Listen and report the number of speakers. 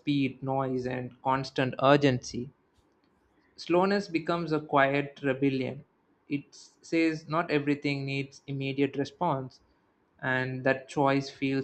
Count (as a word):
one